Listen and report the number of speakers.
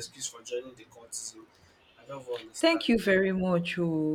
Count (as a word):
two